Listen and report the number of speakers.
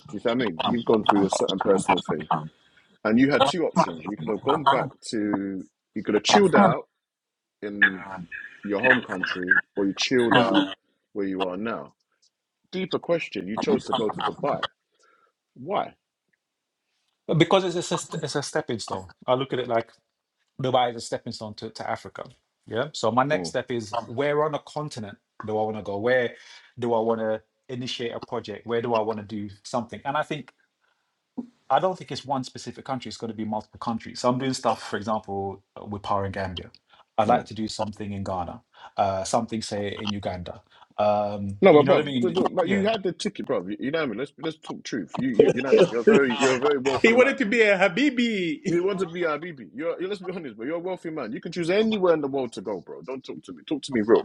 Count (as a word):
three